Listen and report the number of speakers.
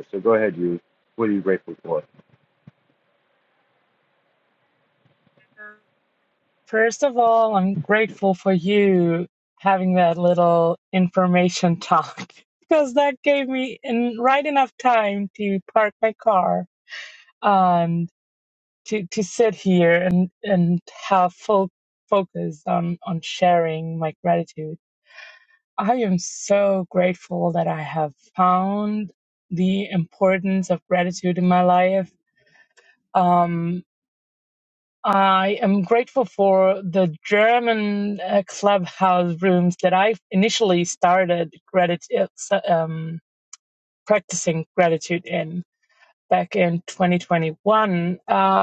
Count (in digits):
2